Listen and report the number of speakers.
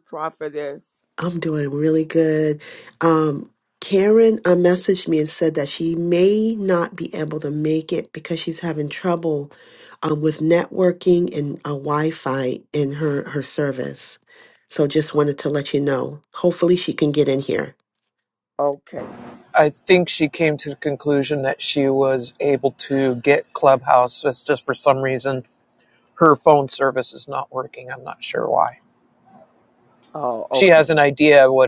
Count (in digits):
3